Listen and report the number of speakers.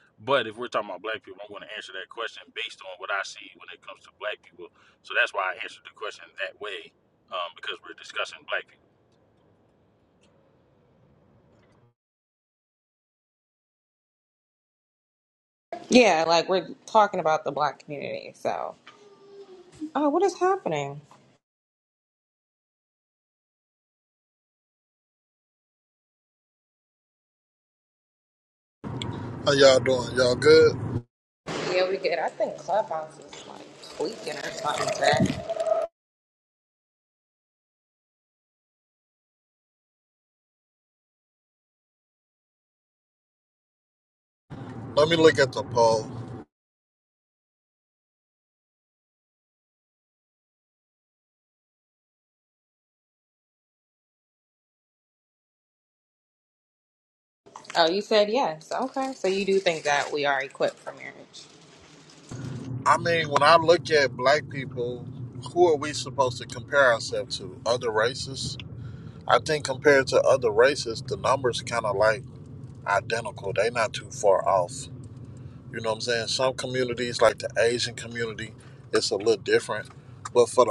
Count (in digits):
3